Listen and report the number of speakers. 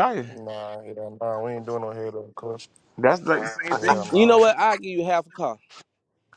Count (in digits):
3